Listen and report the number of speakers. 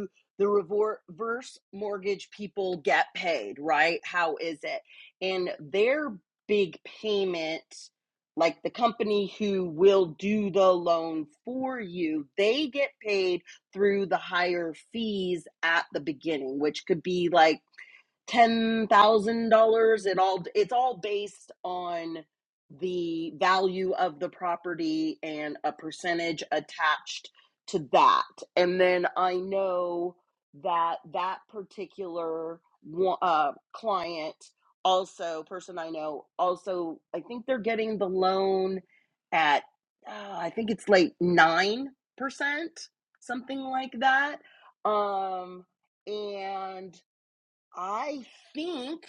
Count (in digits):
1